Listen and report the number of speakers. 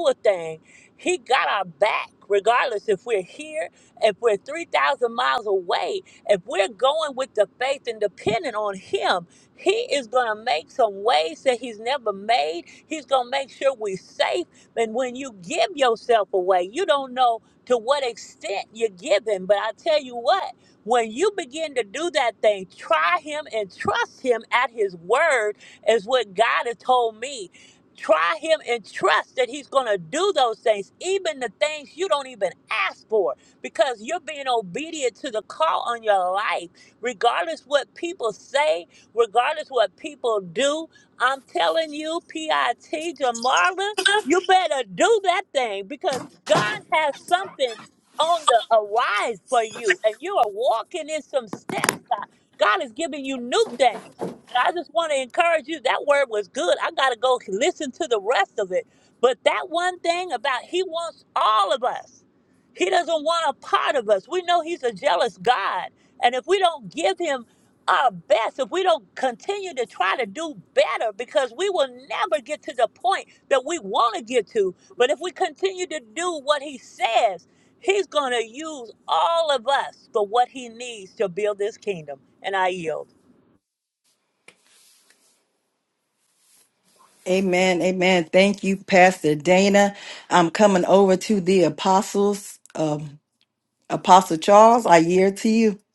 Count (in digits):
2